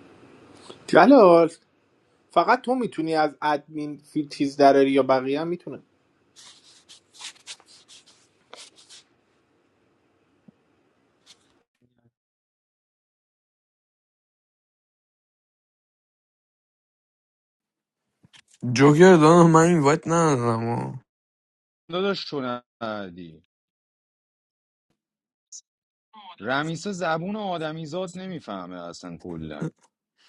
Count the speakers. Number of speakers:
three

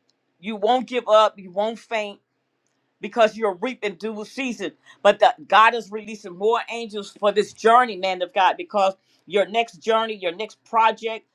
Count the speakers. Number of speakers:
one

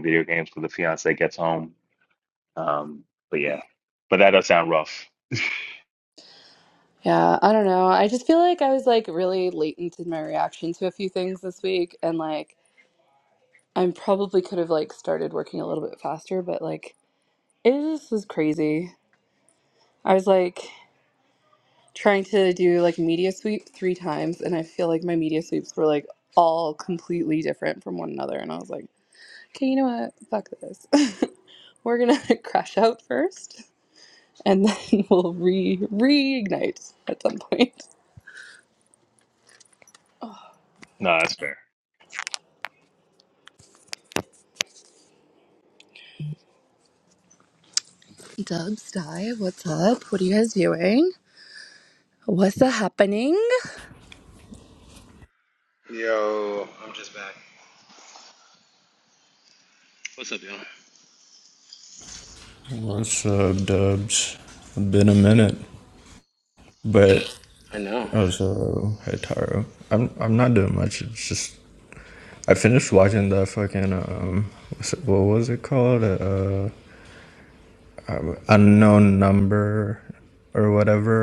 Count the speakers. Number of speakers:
four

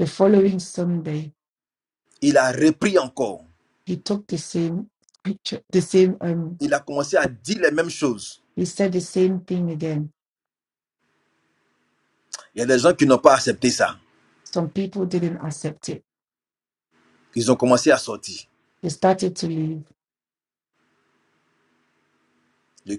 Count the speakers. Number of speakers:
two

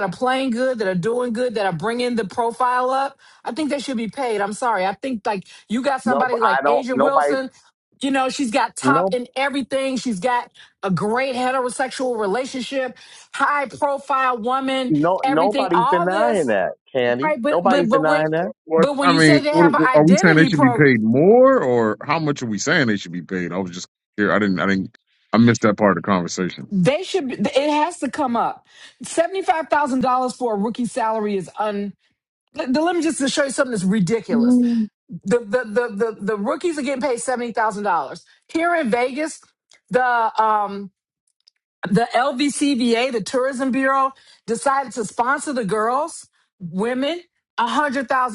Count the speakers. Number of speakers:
three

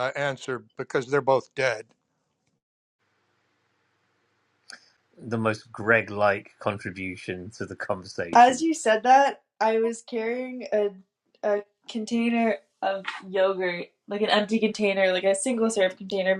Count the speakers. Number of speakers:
three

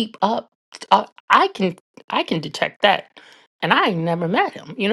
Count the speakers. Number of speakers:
one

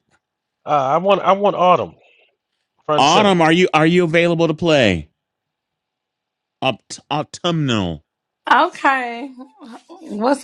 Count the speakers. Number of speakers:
three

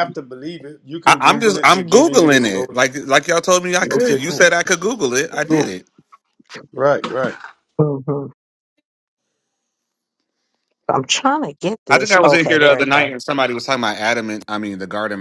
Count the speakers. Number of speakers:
three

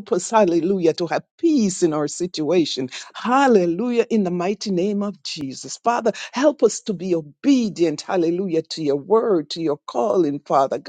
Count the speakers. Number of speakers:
one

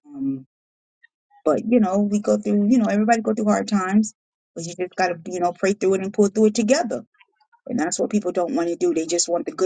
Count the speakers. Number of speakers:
one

